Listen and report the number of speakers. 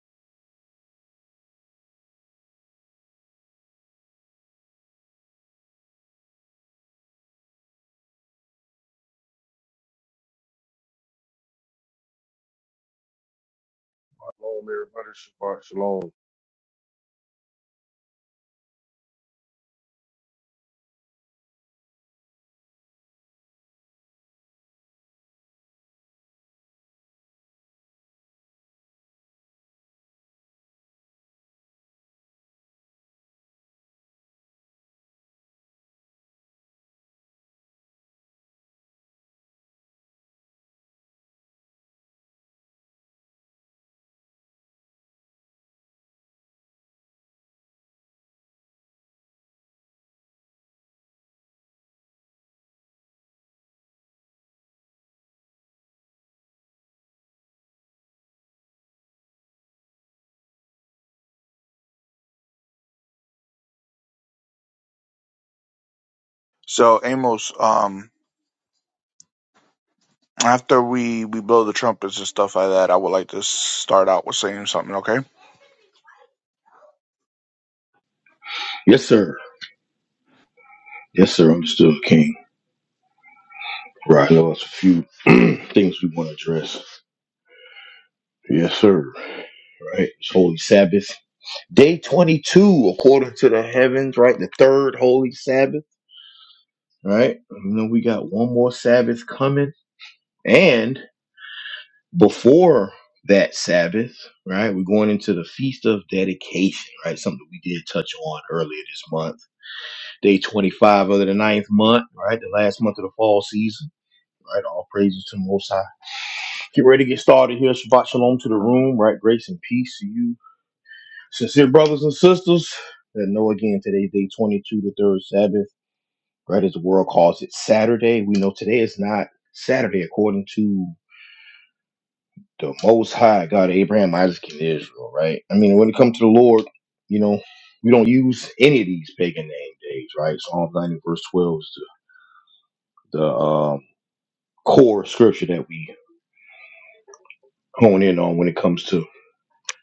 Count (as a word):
three